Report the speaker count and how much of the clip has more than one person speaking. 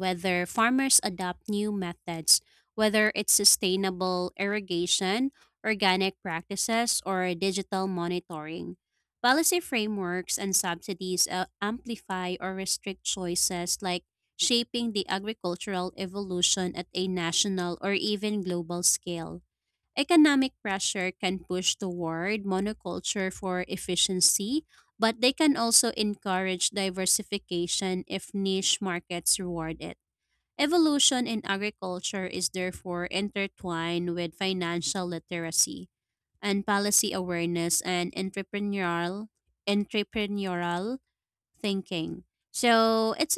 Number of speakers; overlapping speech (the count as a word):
one, no overlap